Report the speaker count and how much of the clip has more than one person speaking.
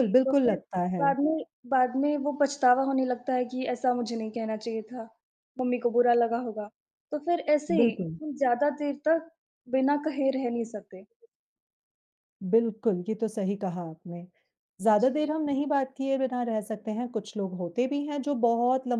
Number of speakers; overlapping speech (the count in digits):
2, about 8%